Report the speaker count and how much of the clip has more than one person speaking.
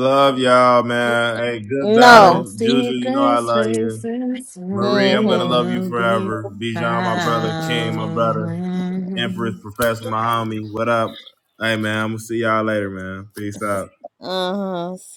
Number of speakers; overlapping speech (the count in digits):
3, about 32%